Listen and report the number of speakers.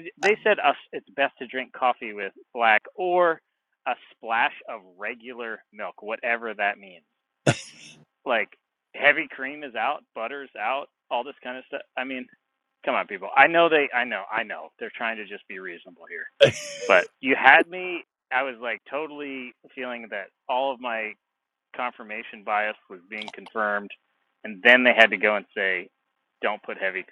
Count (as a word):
one